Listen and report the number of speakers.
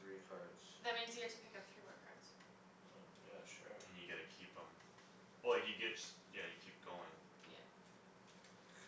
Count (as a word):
three